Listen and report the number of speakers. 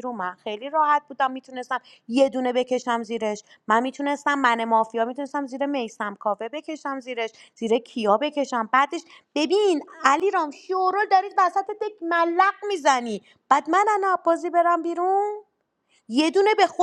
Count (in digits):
1